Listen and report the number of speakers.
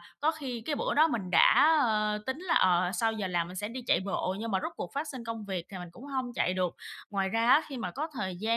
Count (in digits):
1